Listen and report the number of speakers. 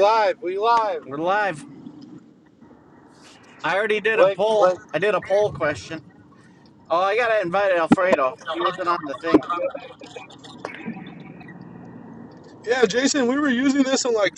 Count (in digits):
3